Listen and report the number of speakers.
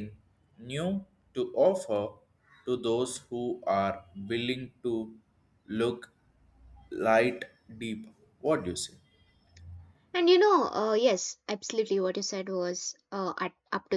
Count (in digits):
2